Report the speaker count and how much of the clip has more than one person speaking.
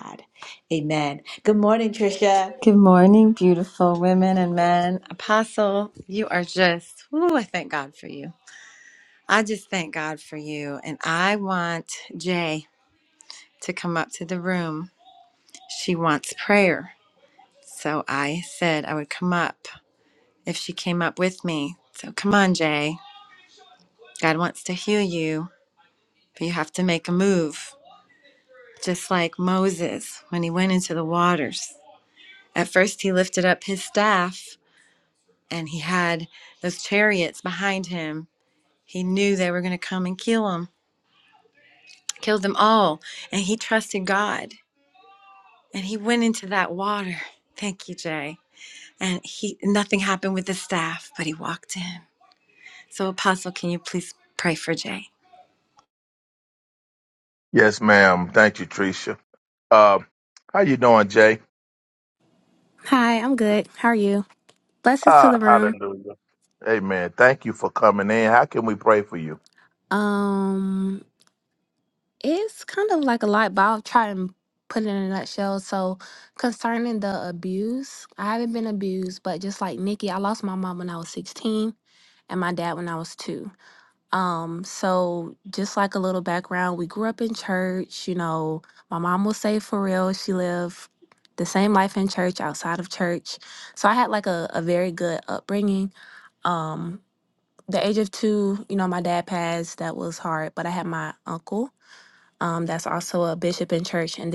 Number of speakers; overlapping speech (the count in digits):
4, about 1%